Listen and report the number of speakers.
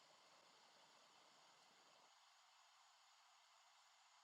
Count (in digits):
0